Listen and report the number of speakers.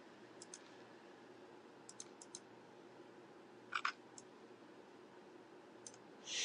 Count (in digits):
0